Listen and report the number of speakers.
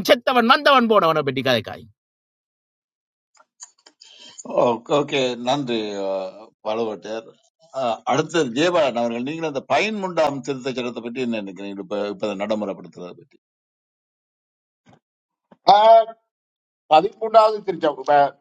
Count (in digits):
3